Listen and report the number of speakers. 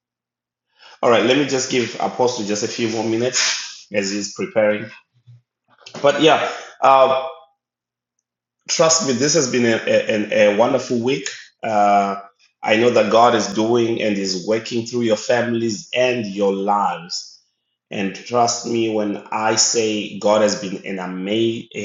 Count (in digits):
1